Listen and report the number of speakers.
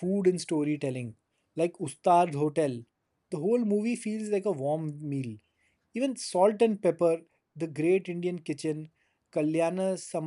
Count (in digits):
1